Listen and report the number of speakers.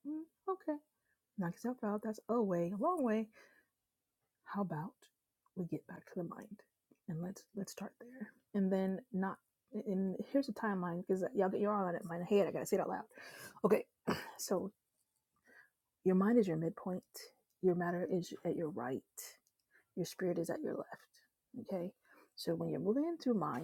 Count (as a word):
one